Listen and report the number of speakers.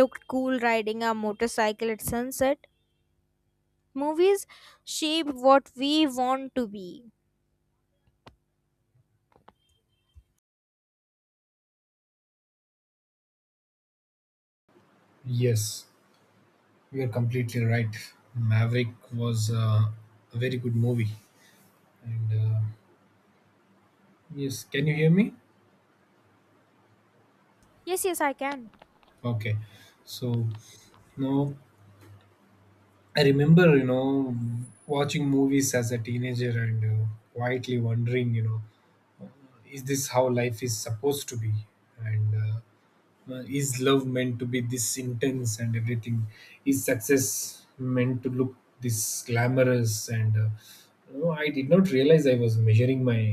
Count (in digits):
2